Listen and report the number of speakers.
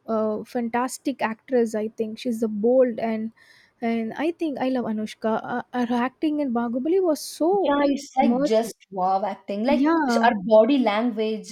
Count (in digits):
2